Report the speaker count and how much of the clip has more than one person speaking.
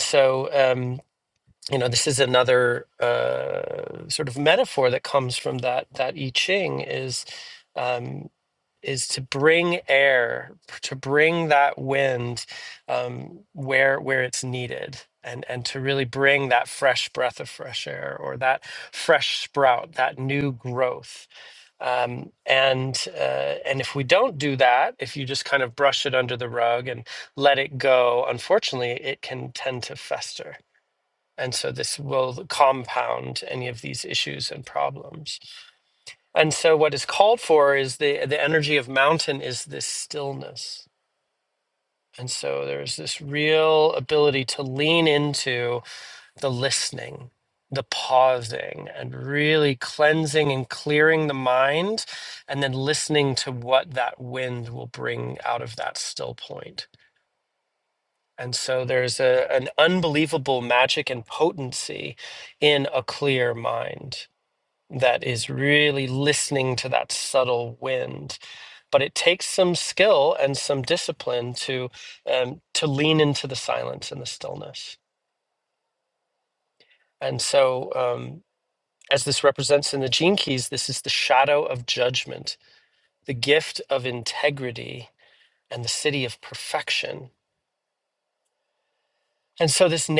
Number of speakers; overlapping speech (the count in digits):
1, no overlap